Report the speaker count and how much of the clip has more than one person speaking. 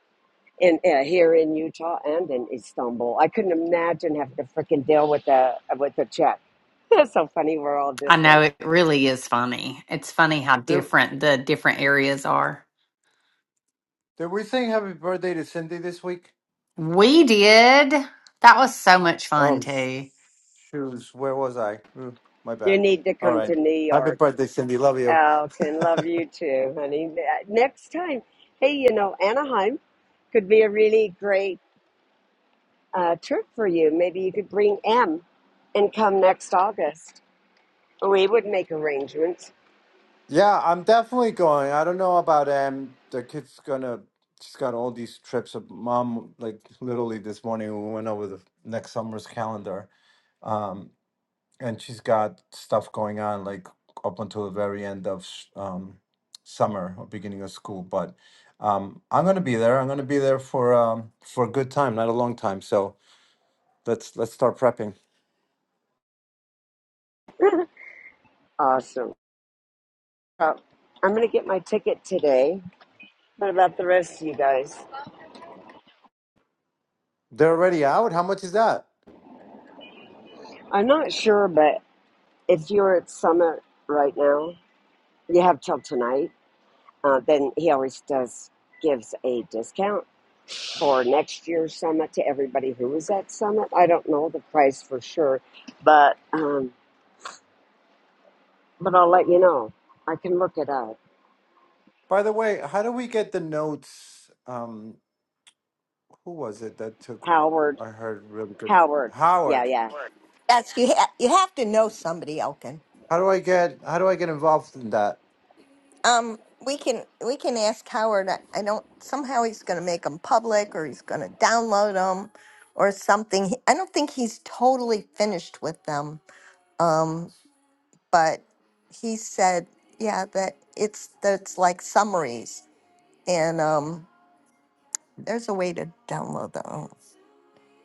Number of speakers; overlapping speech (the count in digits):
4, about 1%